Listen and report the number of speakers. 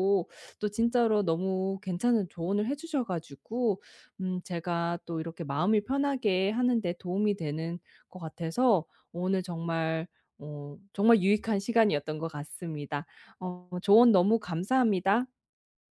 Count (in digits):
1